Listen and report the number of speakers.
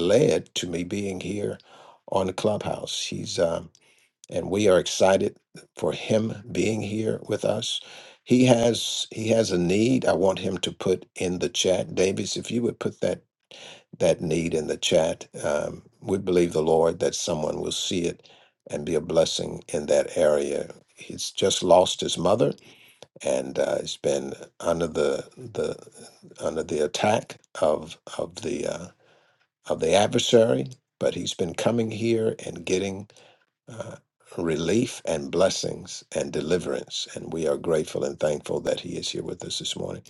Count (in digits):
1